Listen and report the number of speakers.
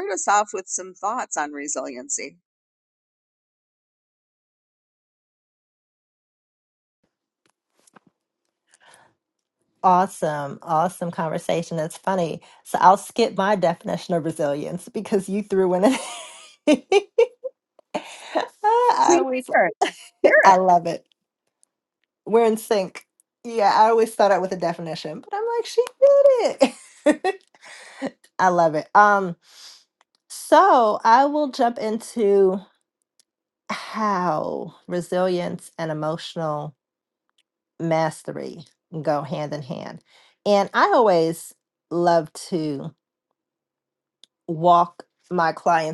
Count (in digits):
2